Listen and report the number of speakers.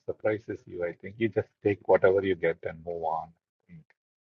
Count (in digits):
1